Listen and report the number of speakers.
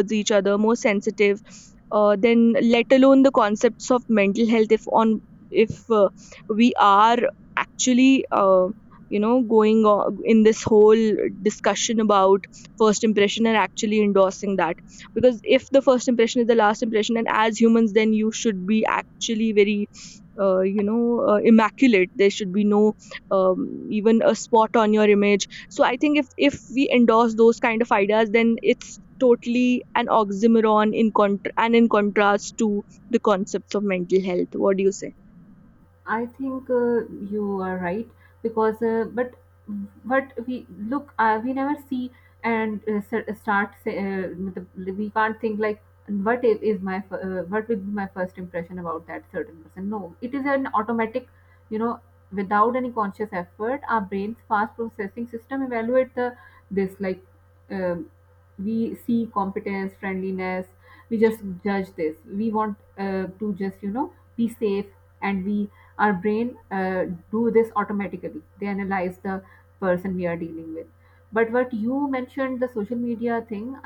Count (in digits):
2